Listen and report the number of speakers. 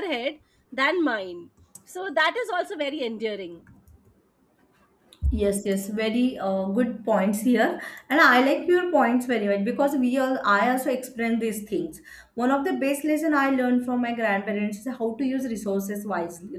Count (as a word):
two